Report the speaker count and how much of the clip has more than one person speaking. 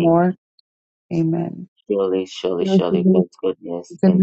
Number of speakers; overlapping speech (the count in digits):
2, about 17%